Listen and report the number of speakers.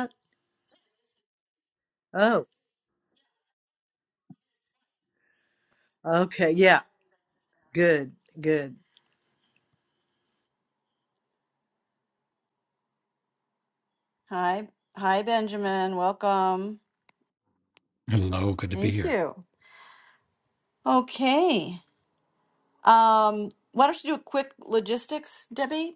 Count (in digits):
3